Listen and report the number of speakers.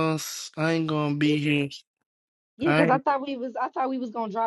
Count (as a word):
two